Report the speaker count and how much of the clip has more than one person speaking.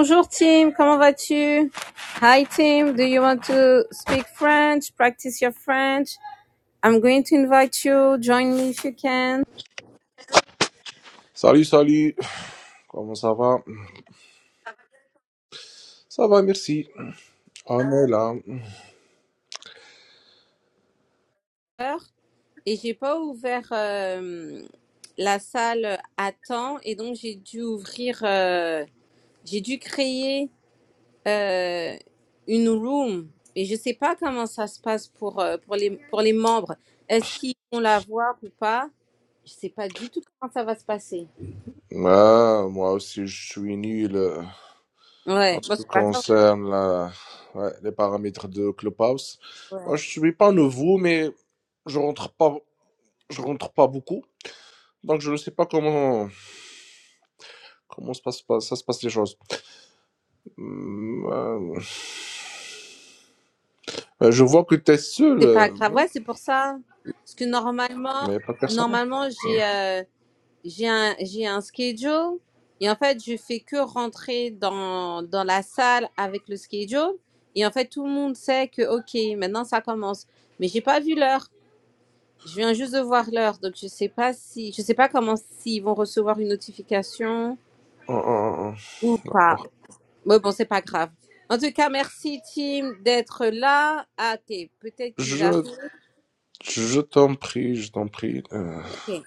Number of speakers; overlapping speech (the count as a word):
two, about 3%